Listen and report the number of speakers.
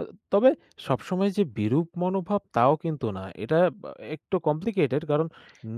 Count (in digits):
1